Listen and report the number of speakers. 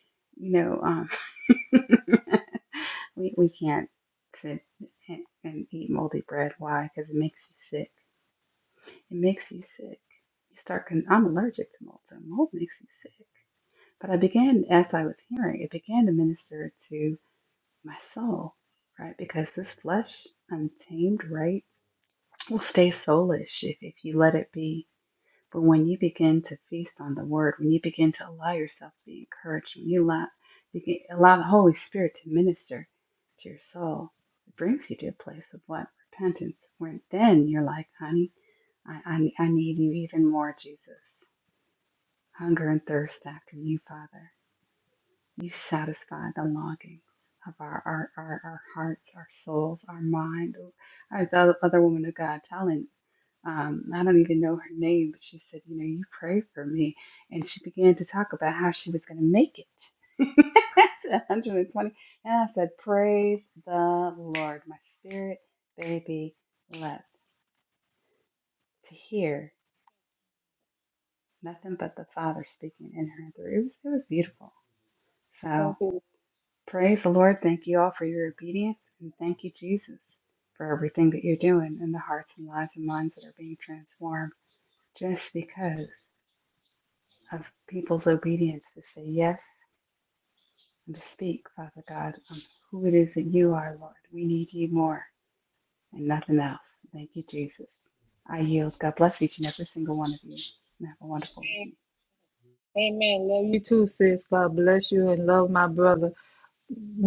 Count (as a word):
two